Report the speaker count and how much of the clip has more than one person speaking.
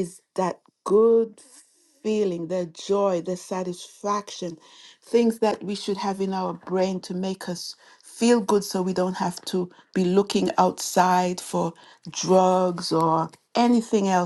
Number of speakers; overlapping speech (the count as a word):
one, no overlap